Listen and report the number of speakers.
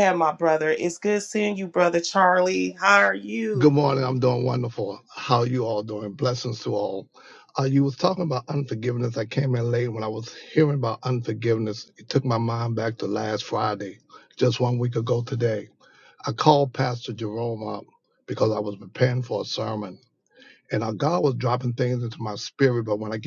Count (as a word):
two